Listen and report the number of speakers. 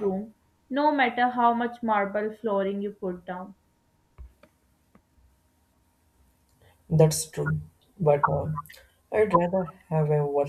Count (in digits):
2